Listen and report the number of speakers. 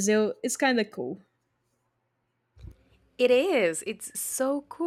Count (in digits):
2